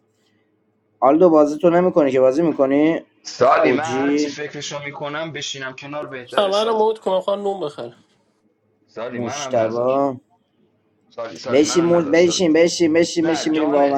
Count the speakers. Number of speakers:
three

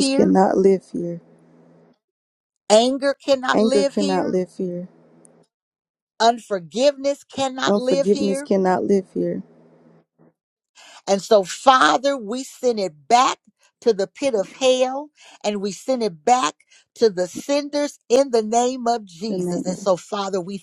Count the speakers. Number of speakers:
two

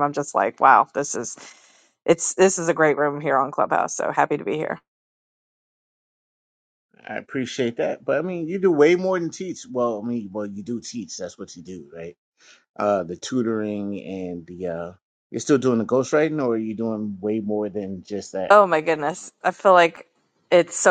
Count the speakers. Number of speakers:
two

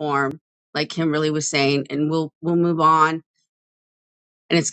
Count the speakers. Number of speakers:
one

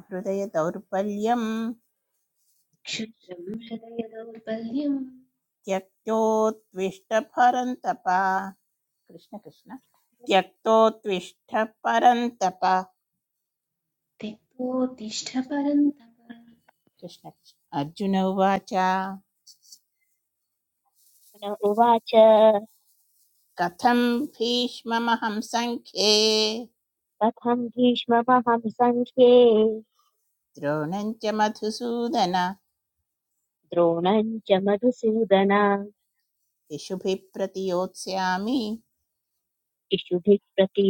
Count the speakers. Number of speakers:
three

